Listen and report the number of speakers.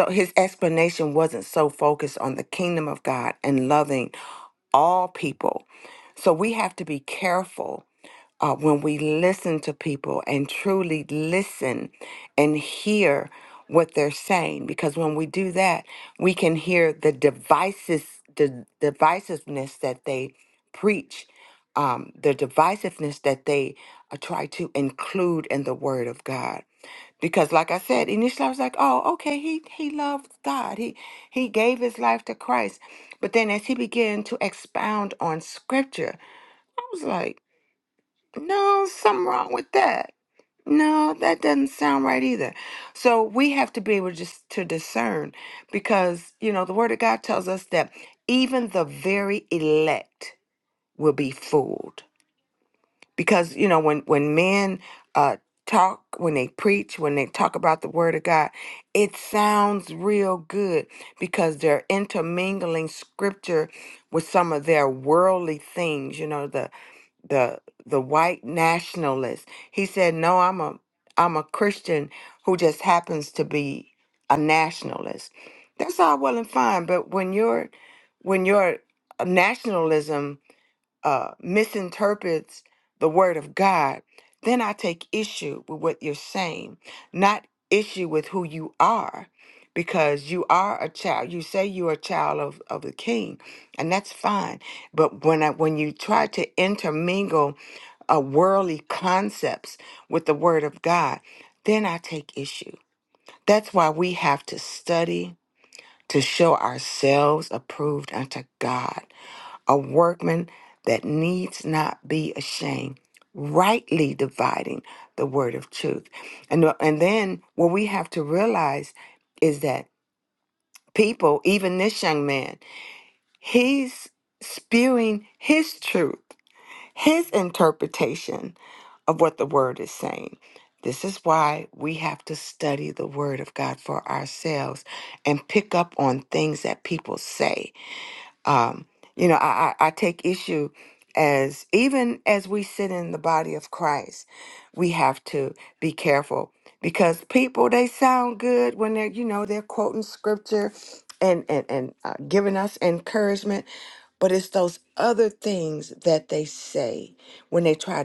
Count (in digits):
1